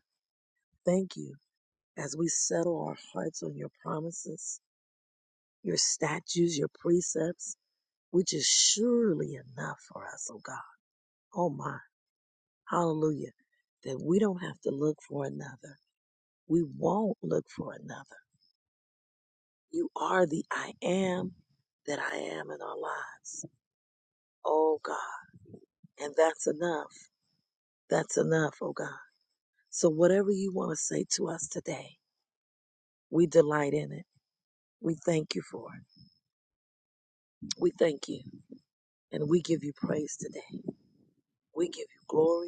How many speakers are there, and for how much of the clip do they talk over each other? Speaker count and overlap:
1, no overlap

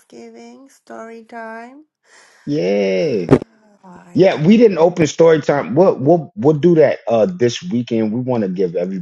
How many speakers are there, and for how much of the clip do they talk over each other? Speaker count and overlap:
2, about 3%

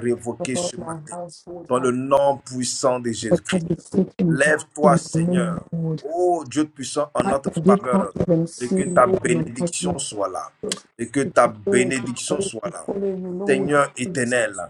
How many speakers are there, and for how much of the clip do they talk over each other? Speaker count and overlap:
2, about 44%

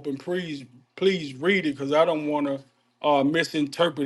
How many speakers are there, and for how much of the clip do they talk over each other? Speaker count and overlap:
1, no overlap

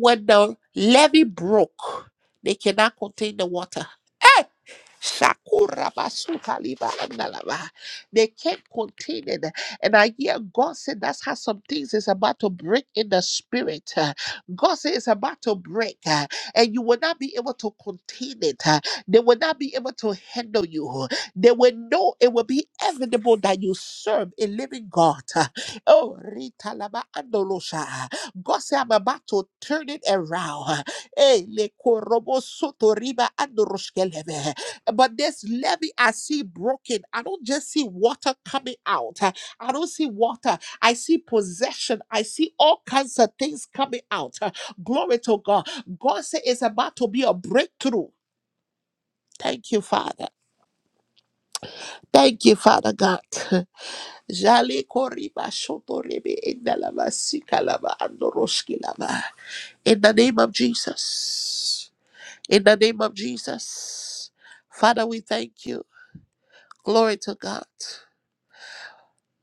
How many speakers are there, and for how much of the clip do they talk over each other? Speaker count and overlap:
1, no overlap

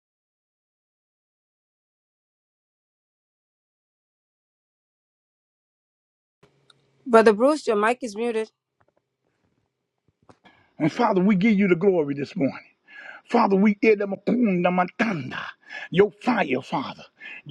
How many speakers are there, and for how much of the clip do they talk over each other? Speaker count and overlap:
2, no overlap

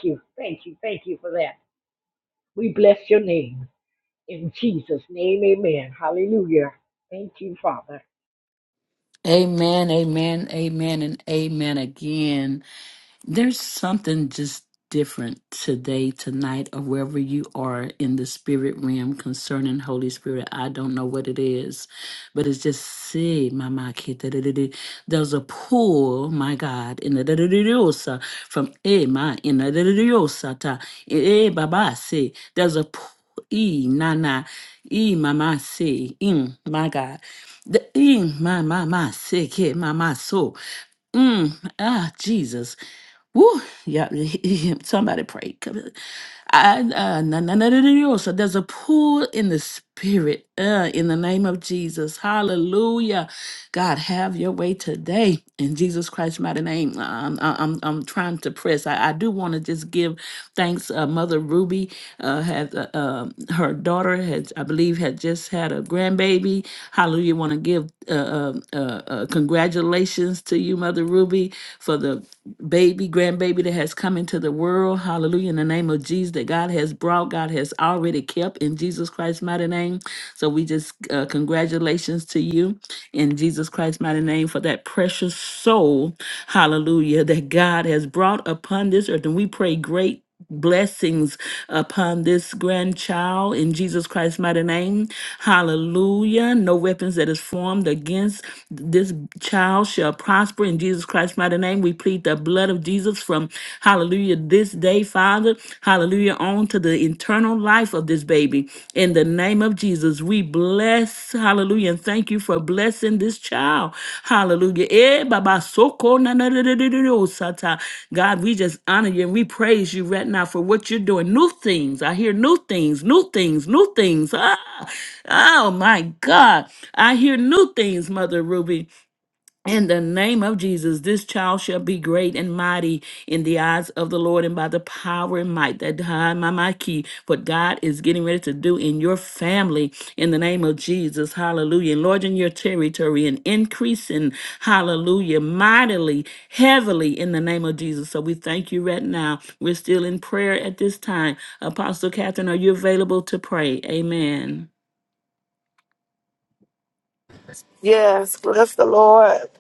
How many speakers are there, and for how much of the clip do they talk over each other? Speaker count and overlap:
3, no overlap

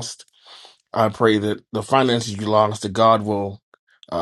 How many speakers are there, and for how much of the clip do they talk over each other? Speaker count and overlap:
1, no overlap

